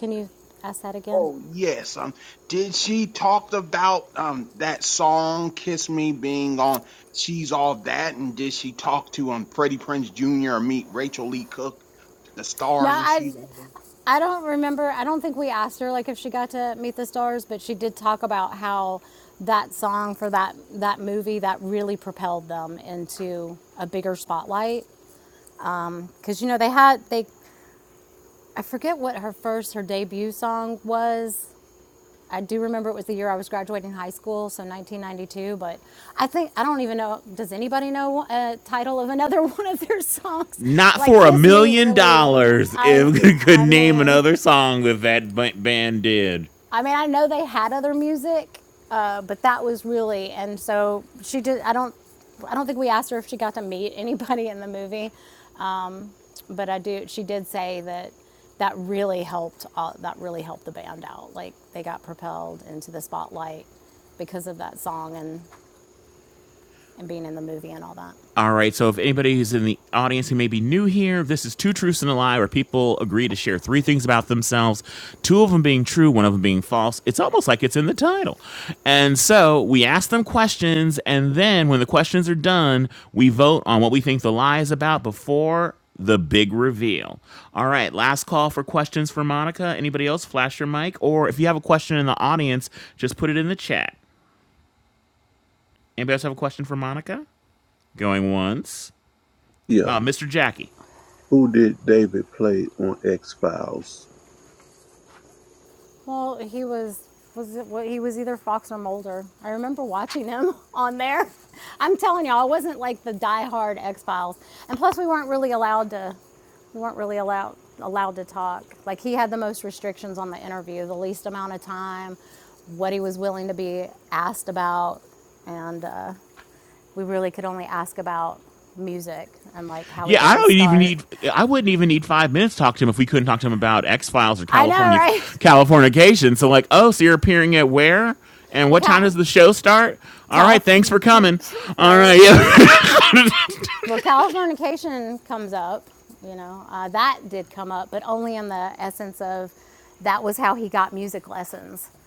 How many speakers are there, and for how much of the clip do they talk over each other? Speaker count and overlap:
4, about 5%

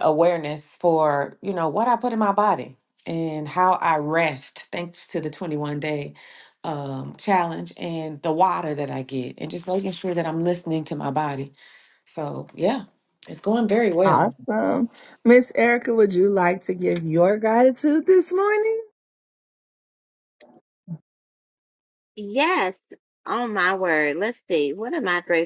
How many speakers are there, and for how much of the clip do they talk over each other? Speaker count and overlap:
3, about 1%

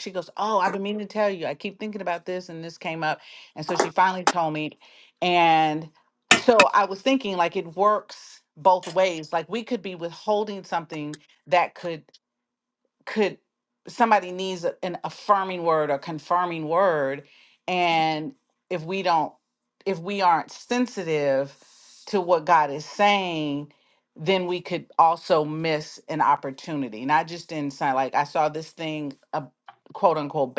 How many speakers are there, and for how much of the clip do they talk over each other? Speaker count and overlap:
1, no overlap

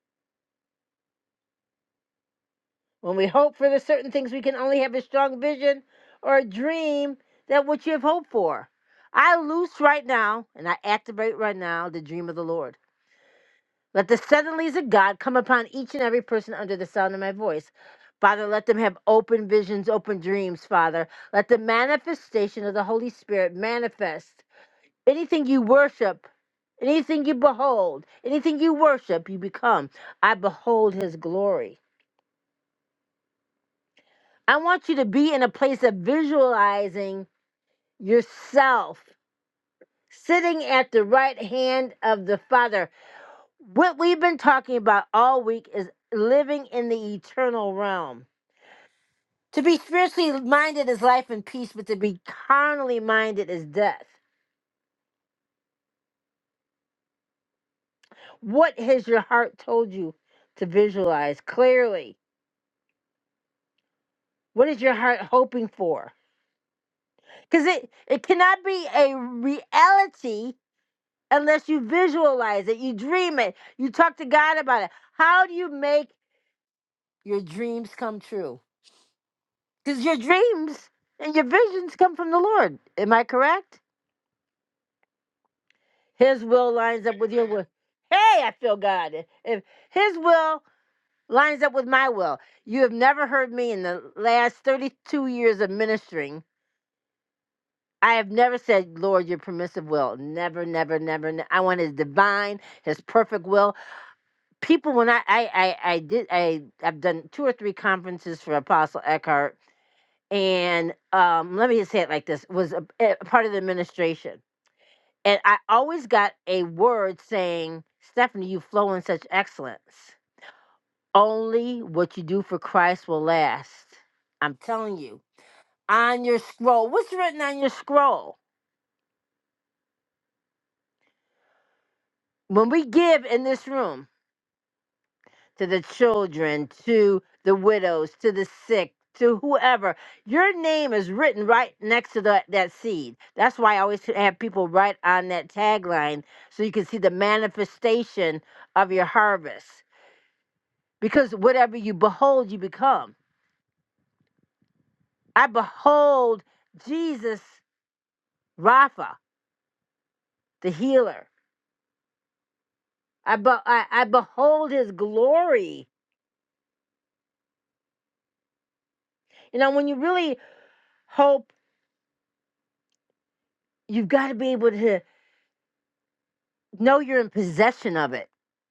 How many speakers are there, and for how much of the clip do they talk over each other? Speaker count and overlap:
1, no overlap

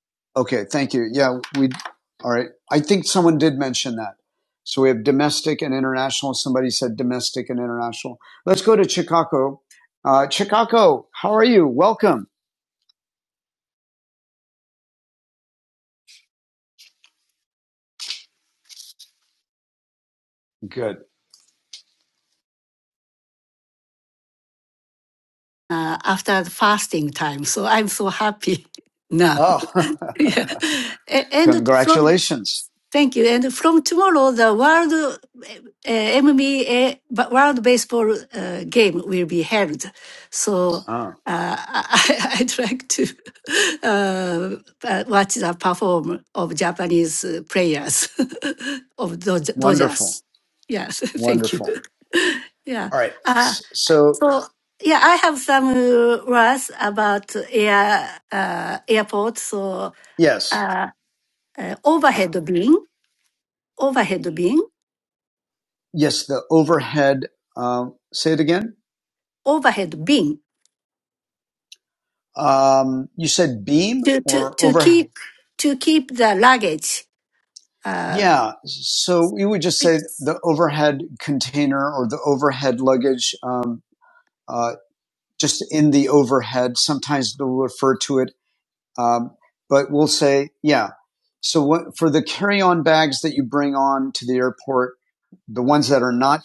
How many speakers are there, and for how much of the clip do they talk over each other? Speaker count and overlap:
2, about 4%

